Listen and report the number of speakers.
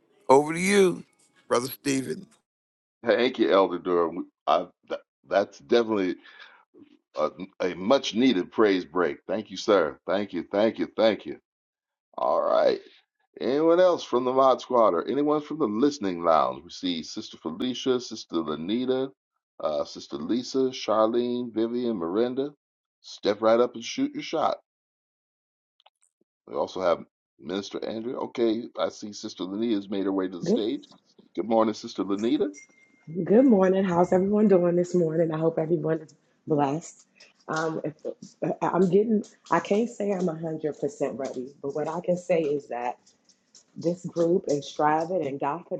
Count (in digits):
3